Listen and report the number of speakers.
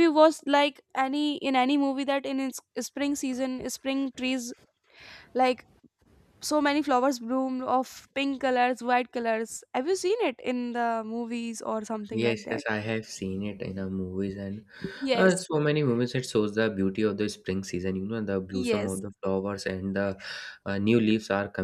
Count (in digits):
2